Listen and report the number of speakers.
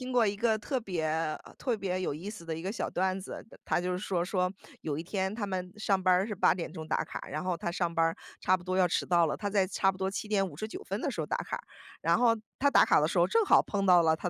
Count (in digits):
1